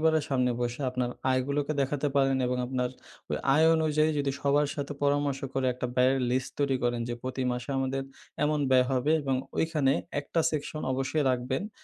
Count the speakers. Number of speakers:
1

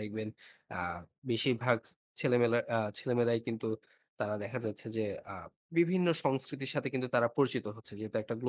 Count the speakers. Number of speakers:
1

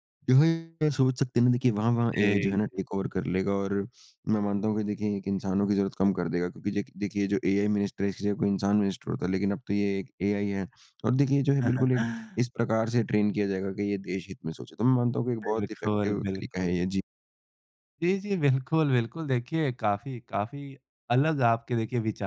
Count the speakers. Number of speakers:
2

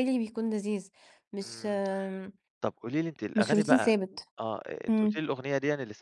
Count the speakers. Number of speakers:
2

